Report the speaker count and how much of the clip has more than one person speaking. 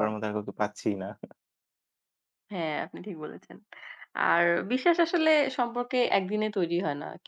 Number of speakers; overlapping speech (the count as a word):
two, about 2%